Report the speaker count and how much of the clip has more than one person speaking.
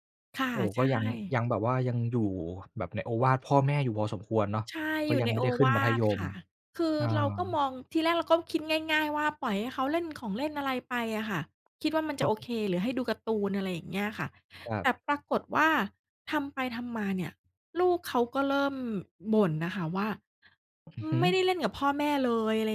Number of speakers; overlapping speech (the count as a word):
two, about 9%